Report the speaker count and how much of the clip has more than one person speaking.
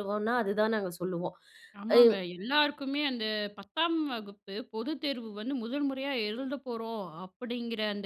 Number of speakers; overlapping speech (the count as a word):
two, about 3%